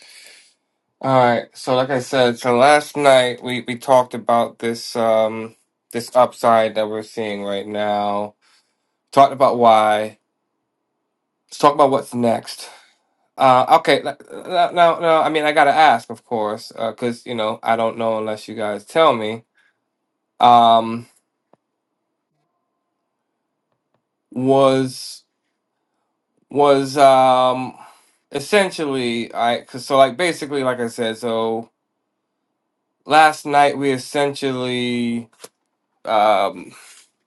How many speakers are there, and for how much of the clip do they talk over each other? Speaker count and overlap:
1, no overlap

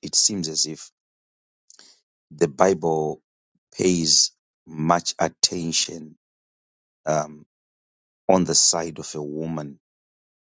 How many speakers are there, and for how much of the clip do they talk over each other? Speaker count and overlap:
1, no overlap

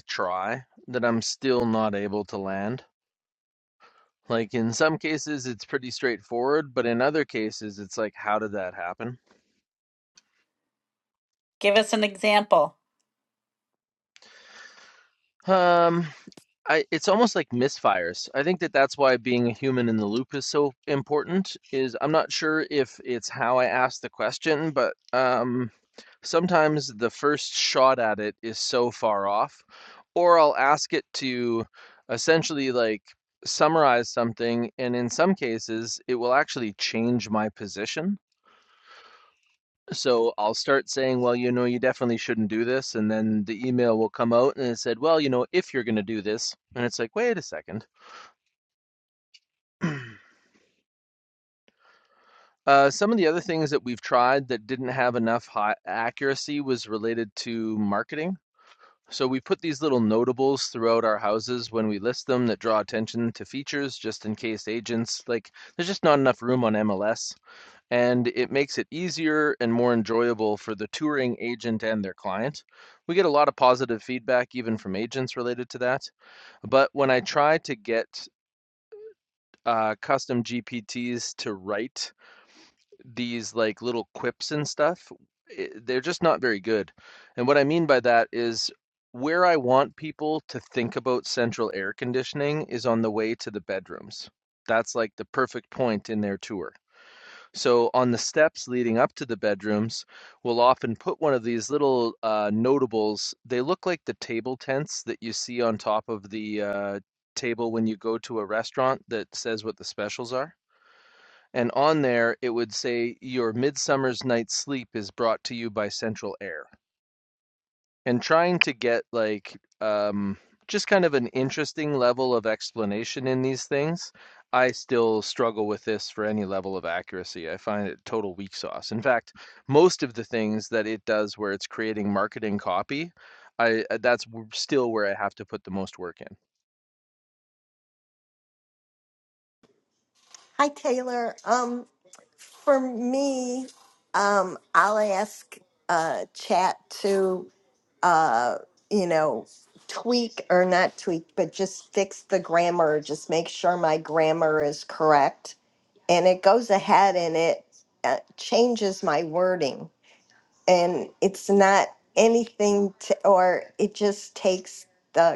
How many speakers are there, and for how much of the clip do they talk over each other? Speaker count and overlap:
3, no overlap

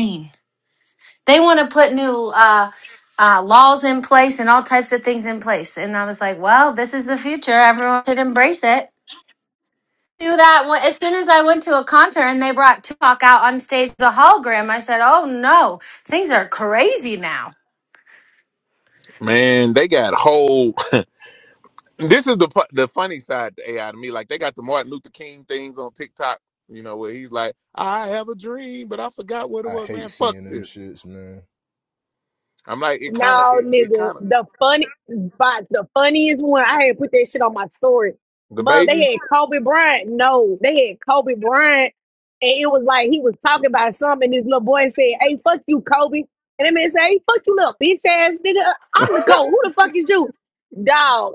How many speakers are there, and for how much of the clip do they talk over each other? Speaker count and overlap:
4, about 5%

